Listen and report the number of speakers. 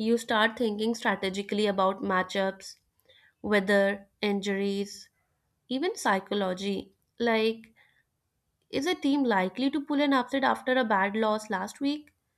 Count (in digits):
1